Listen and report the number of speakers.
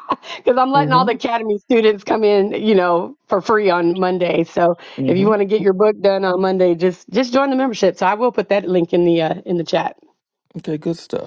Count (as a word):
two